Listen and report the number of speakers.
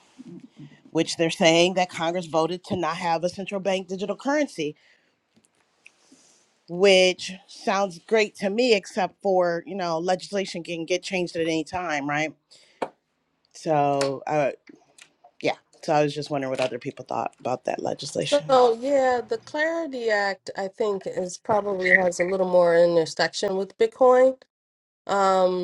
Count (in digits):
2